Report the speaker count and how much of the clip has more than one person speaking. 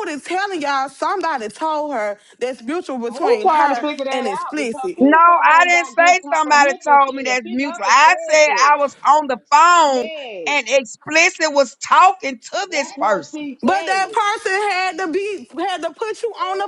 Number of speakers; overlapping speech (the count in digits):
3, about 43%